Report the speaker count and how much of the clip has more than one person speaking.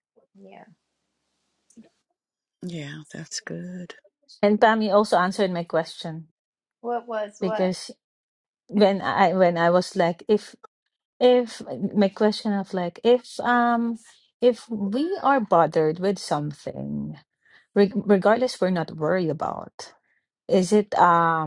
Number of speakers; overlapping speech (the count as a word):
three, about 2%